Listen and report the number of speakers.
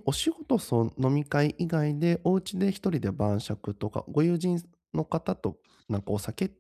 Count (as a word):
one